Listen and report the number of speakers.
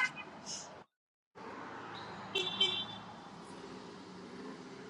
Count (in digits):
0